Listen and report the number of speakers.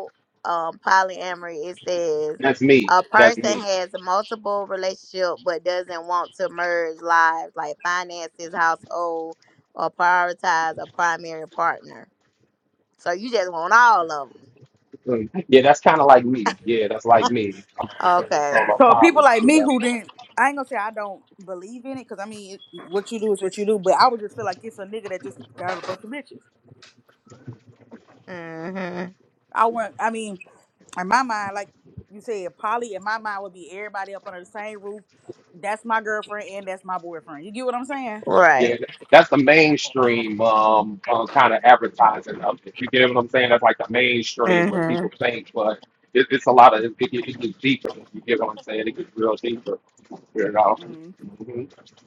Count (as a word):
three